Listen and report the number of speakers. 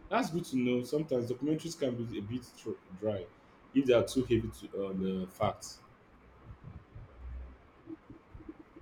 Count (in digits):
1